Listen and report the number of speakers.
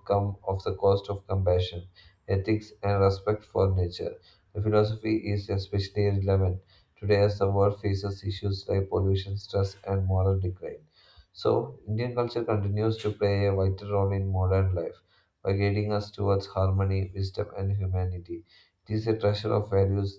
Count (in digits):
1